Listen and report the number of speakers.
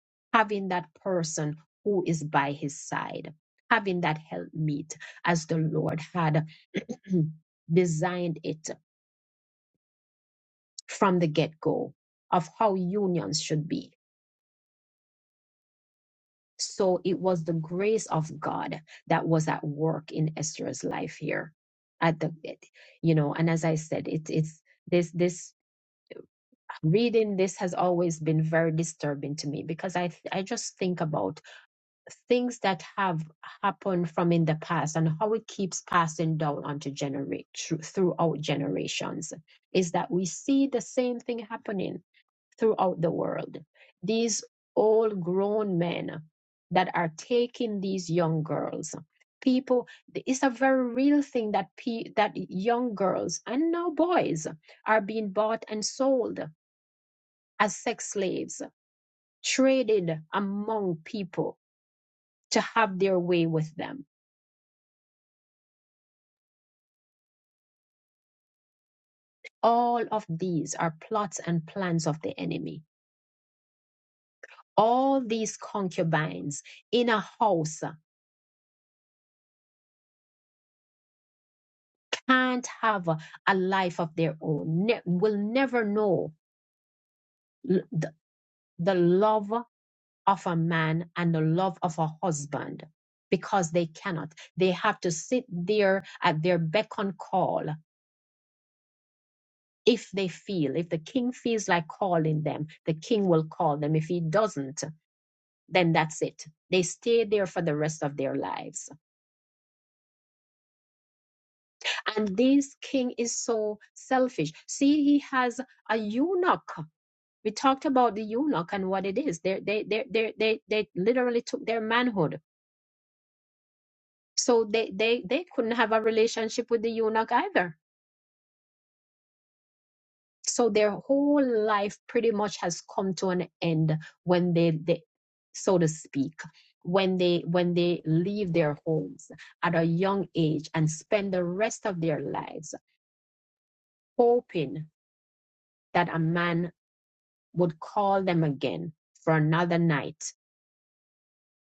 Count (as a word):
one